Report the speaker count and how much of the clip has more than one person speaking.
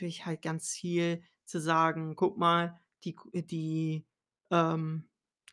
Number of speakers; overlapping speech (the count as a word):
one, no overlap